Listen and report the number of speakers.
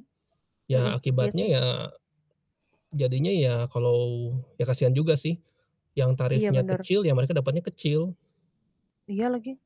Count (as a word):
two